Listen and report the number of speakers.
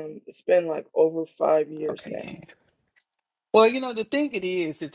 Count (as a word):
two